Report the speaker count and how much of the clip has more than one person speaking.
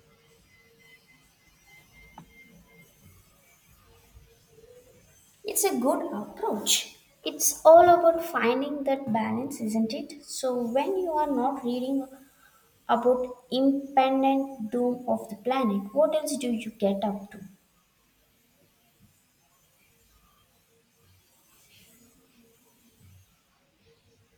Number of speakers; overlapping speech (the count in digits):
1, no overlap